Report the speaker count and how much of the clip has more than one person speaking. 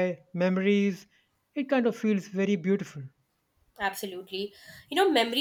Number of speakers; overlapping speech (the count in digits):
2, no overlap